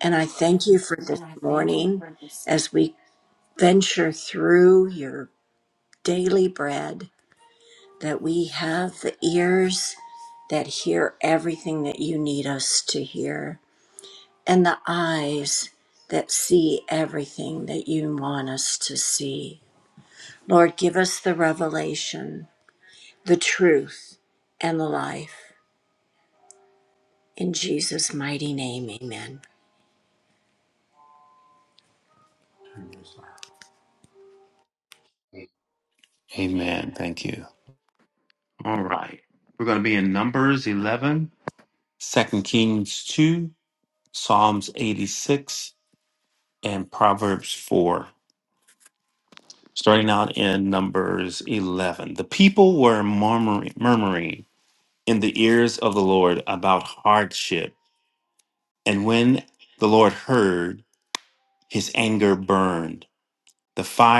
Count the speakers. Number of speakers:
2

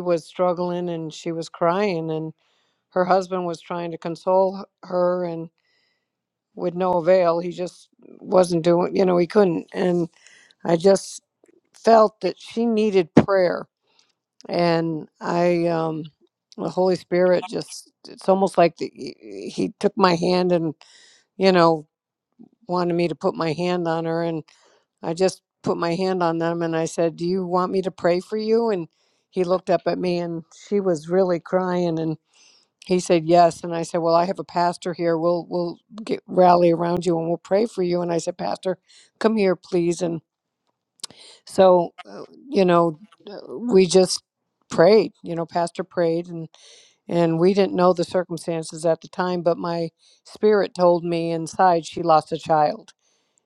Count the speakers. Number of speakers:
1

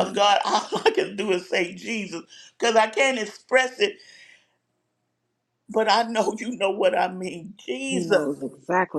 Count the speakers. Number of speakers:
2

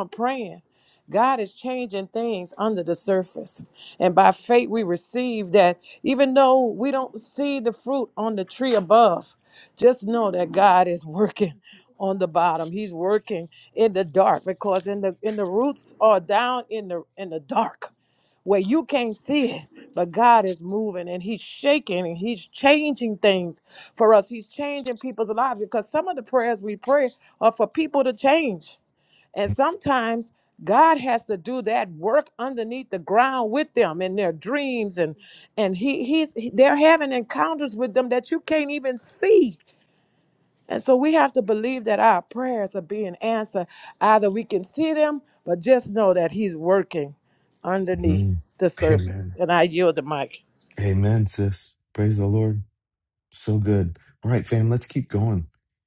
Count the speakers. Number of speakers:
2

